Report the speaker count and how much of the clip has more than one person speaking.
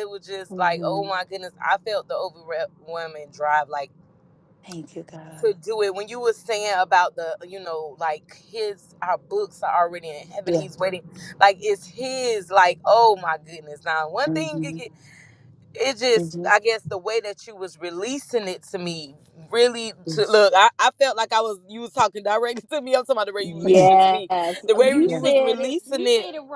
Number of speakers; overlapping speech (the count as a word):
three, about 16%